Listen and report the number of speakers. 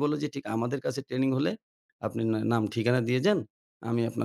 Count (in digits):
1